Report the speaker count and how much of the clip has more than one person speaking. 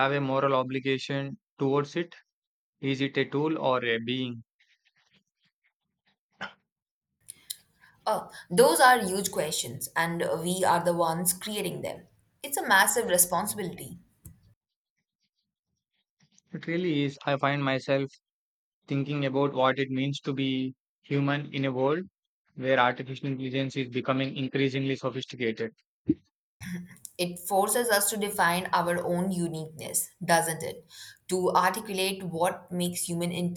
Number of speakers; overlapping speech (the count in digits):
2, no overlap